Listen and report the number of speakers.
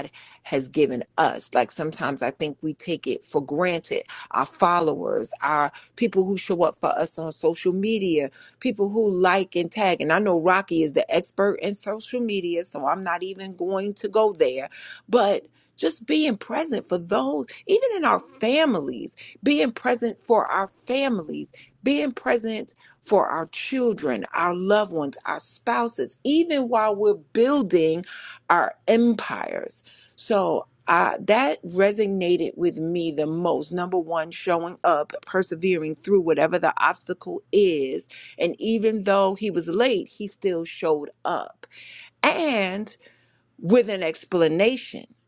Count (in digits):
1